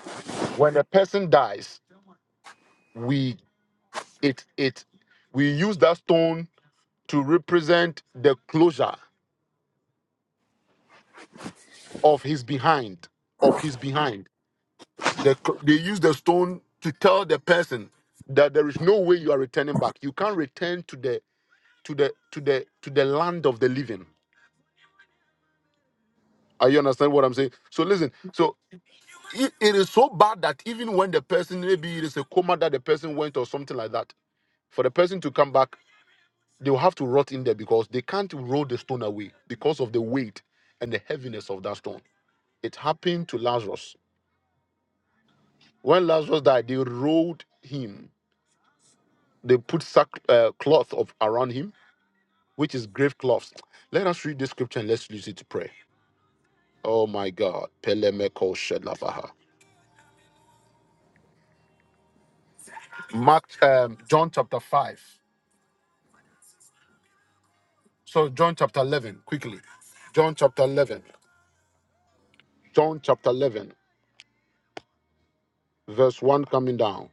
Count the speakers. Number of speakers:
one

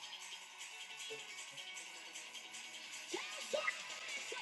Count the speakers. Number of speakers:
zero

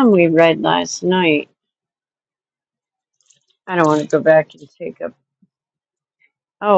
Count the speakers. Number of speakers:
one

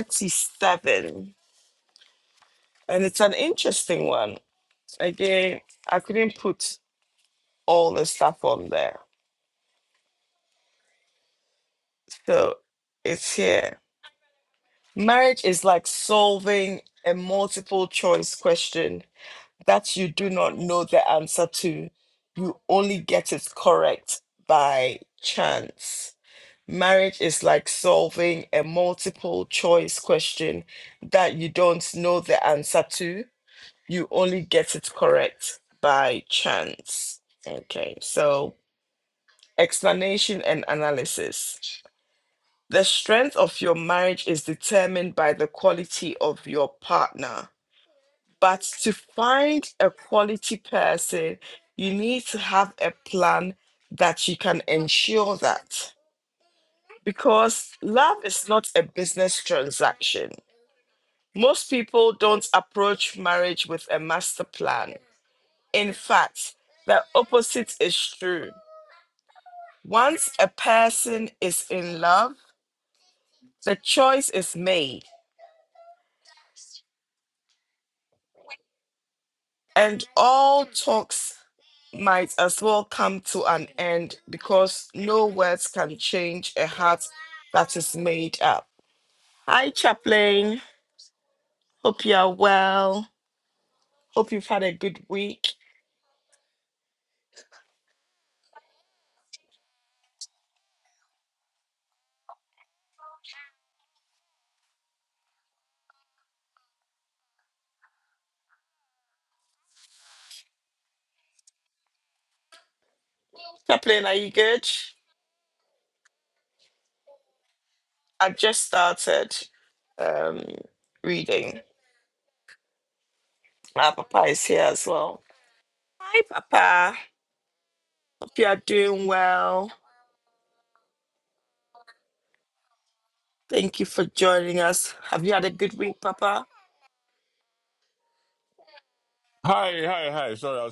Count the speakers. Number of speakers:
two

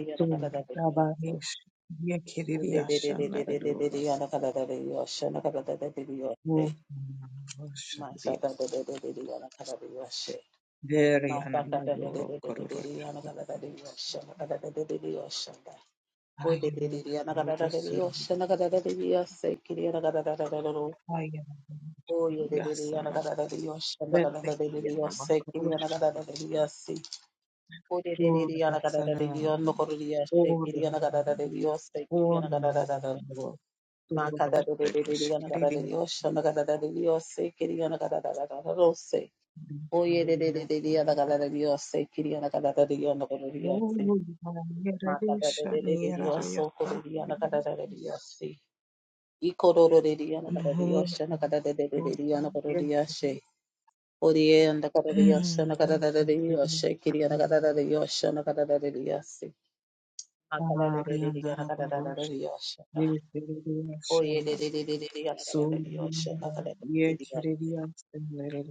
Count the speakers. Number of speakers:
two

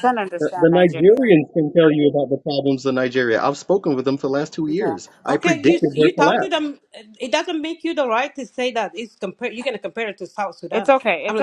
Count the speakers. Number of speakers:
three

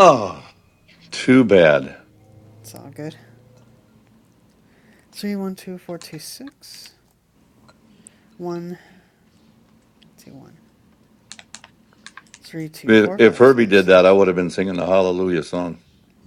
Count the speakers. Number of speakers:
two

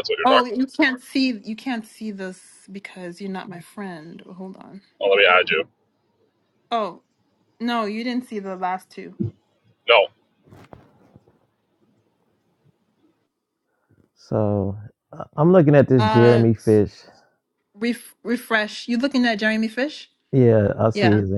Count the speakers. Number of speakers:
three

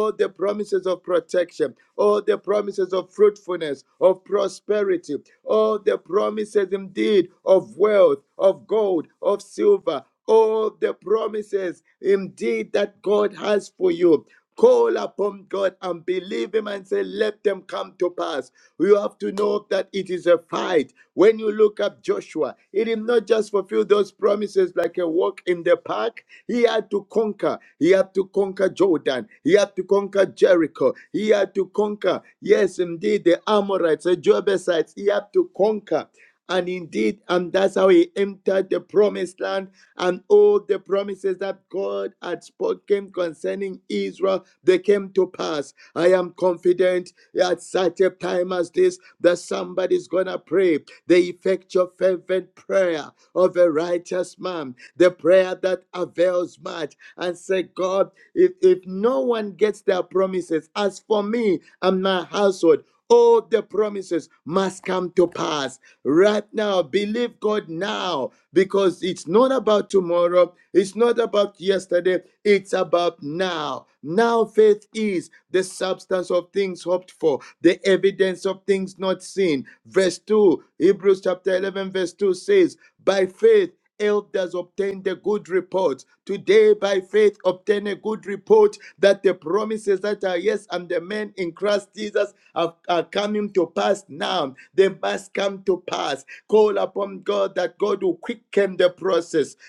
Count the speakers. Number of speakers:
one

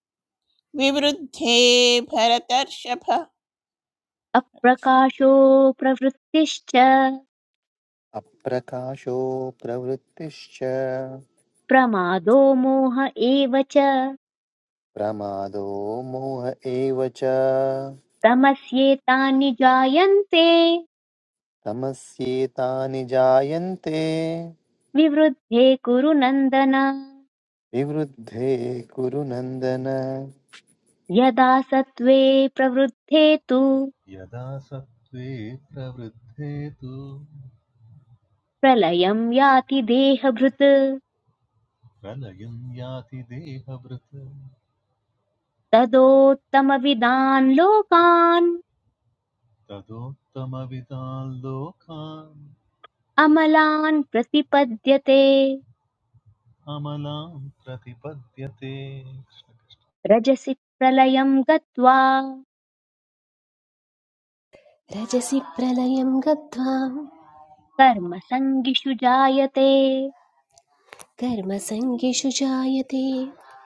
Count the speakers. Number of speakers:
five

